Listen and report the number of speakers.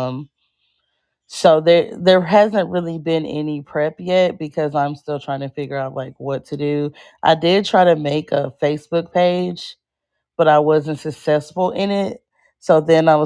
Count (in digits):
1